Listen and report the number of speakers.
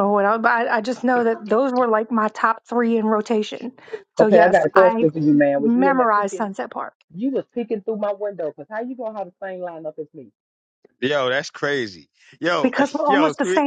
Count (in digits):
3